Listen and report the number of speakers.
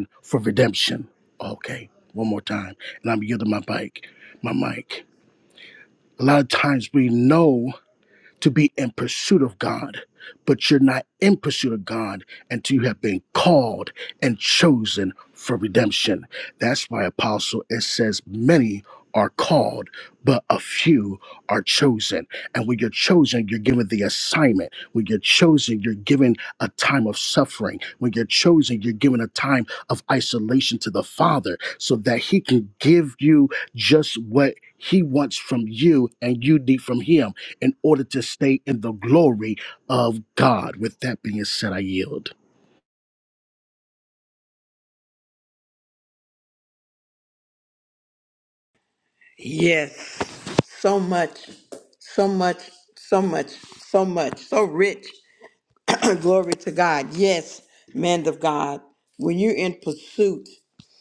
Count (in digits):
2